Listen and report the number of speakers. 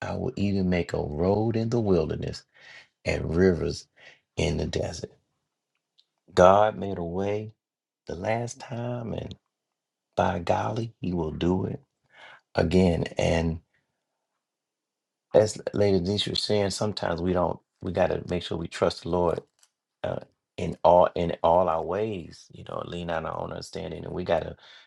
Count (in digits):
1